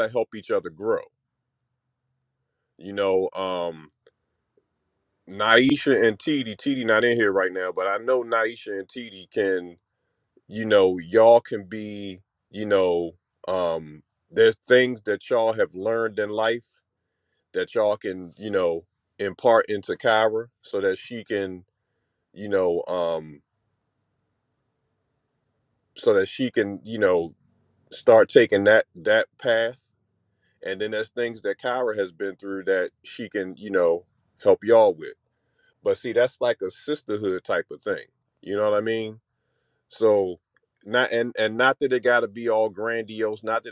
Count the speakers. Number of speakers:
1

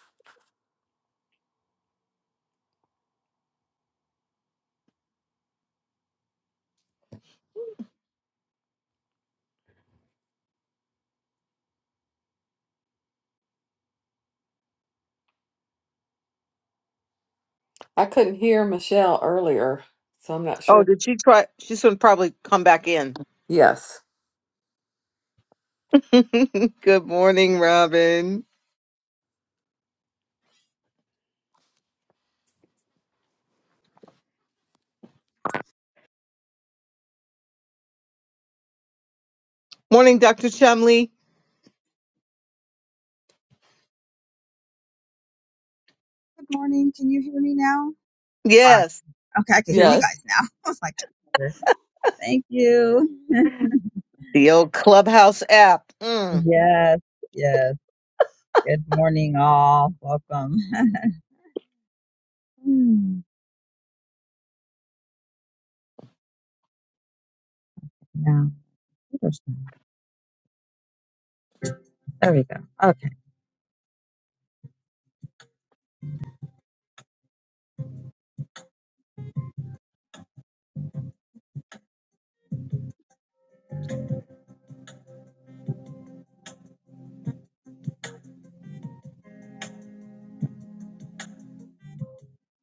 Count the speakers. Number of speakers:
3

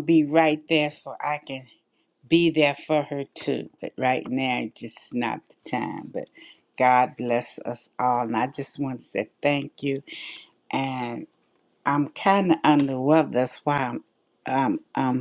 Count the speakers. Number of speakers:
1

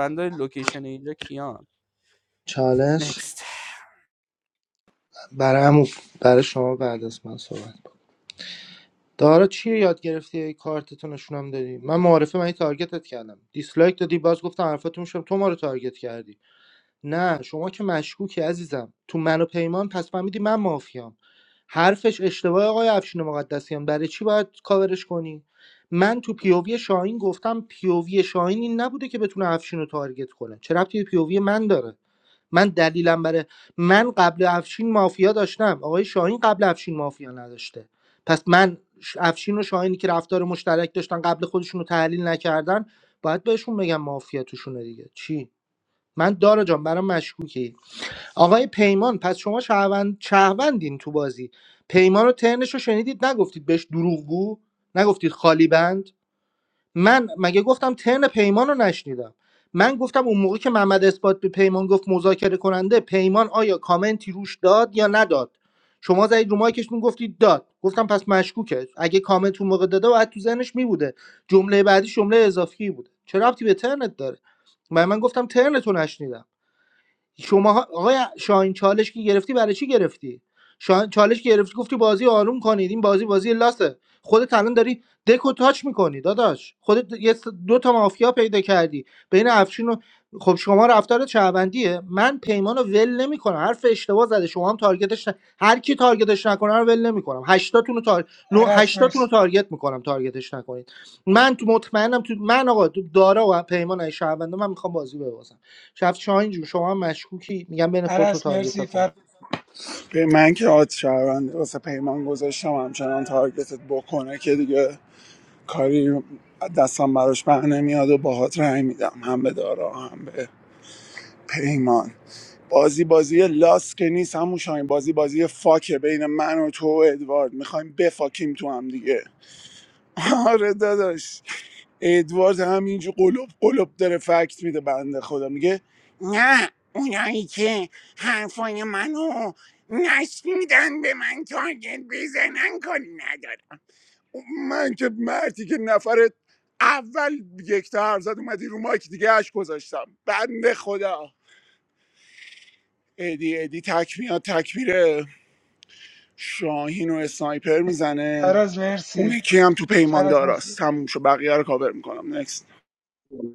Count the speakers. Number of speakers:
4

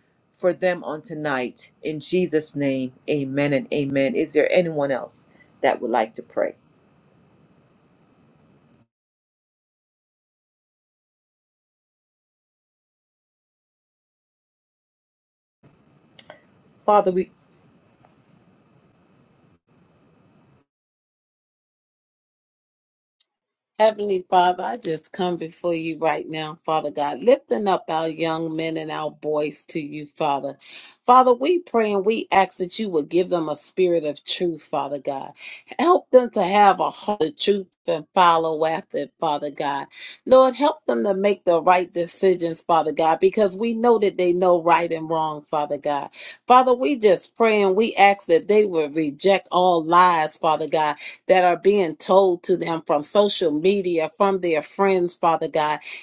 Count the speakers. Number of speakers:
2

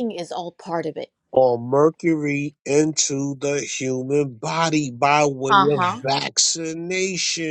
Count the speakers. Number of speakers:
2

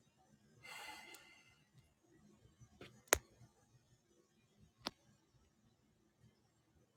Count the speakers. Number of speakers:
0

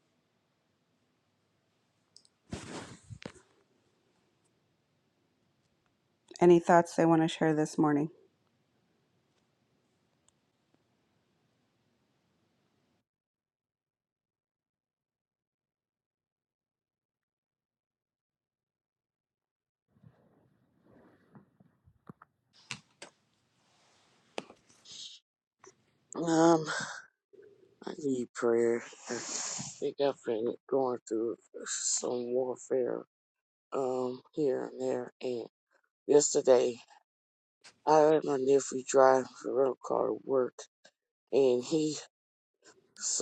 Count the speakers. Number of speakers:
2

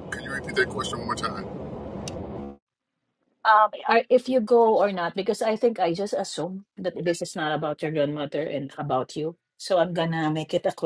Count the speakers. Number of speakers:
2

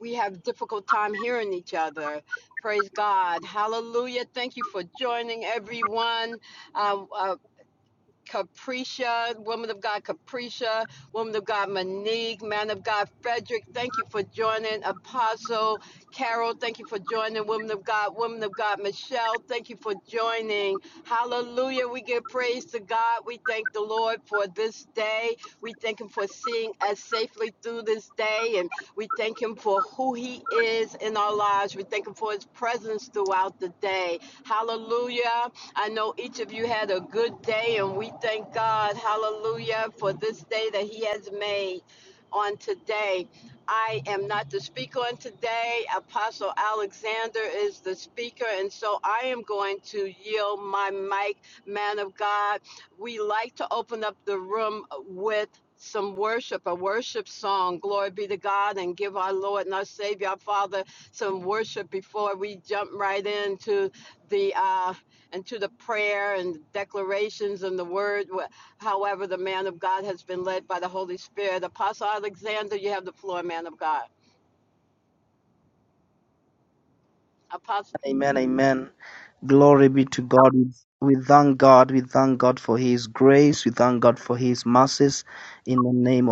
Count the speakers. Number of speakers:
2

